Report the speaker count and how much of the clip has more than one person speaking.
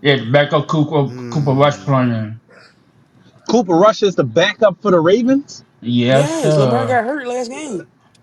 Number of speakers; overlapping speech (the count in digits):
3, about 11%